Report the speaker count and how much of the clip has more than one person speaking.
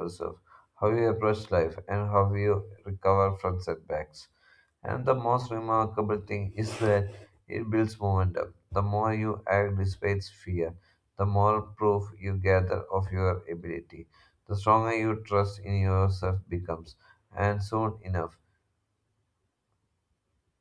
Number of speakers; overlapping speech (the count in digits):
1, no overlap